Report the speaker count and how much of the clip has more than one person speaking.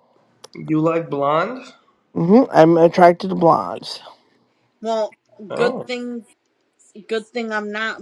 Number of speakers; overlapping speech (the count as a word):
three, about 4%